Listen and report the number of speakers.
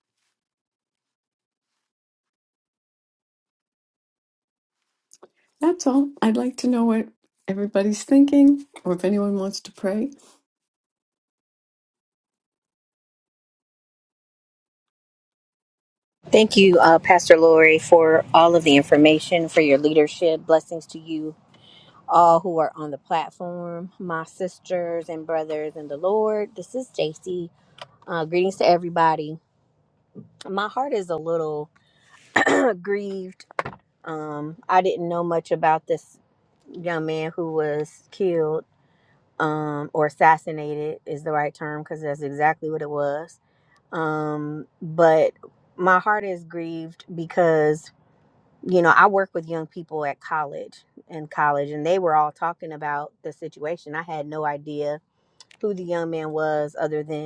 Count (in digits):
2